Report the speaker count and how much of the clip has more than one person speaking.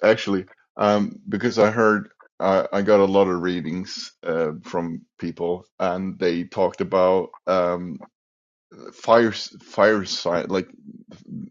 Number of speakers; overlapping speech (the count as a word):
one, no overlap